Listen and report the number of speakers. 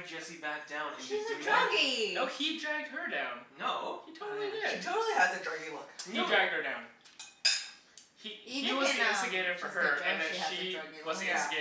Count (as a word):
four